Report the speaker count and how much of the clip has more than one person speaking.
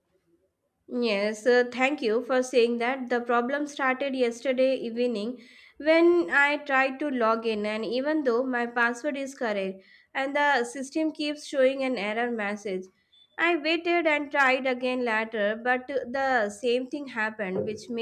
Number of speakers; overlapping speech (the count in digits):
1, no overlap